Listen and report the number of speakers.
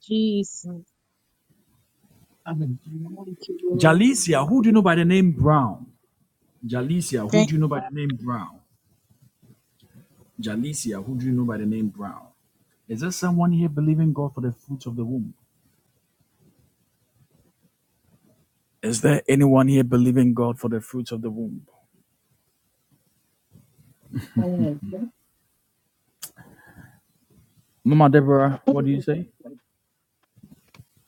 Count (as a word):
three